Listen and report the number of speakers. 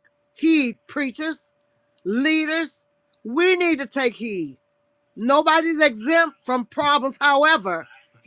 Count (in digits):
1